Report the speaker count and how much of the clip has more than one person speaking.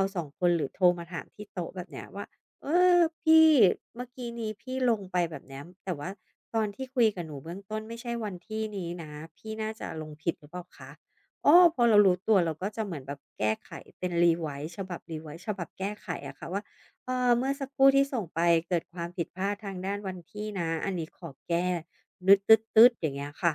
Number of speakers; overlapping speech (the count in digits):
1, no overlap